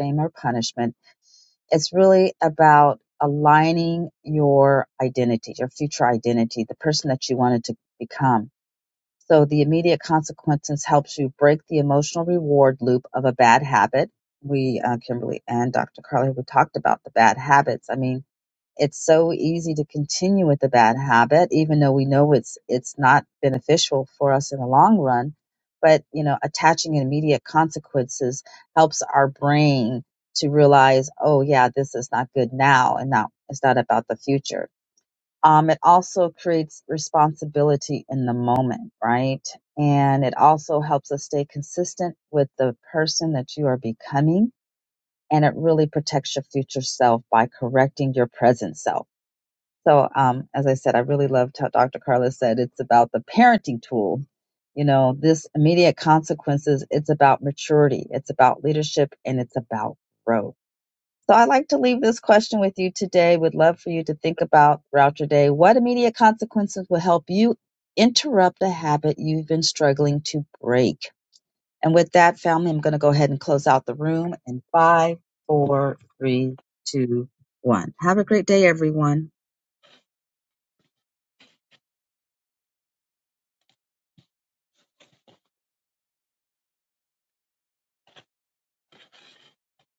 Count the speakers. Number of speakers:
one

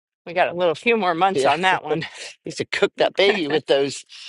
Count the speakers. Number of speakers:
two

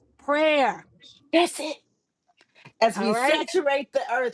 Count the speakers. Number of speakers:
two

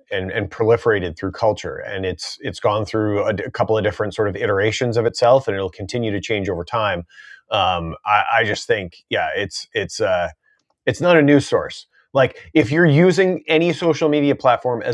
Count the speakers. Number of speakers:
one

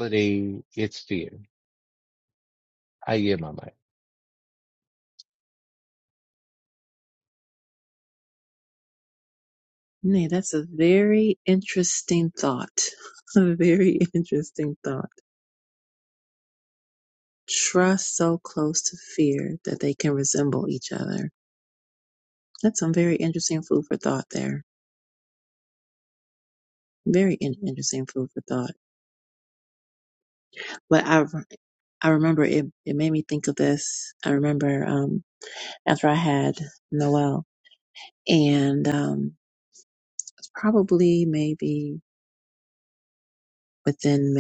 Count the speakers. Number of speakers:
two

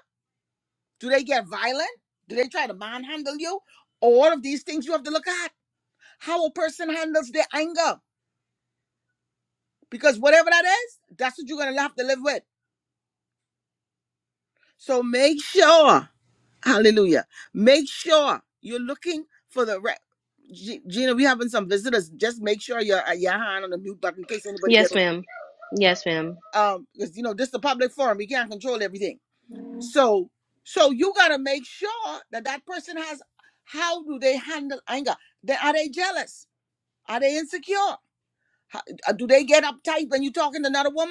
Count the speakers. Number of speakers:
two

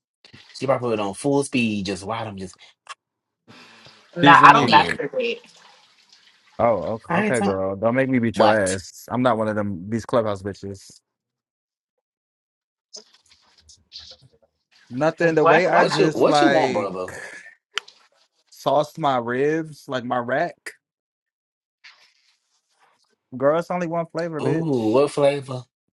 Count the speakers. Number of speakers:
three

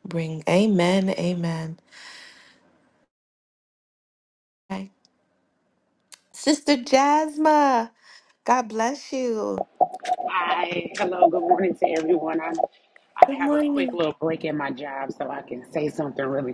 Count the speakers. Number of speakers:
two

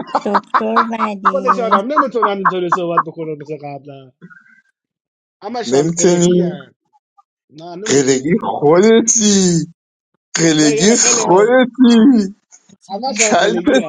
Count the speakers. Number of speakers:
three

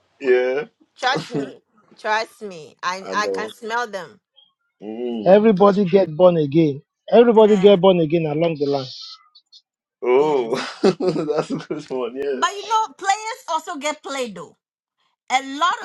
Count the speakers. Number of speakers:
three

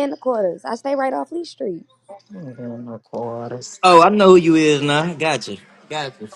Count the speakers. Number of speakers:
three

